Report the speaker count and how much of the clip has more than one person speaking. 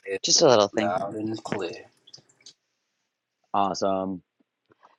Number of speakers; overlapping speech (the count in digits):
2, about 6%